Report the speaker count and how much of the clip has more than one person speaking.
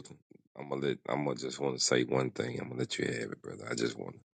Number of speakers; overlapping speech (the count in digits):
1, no overlap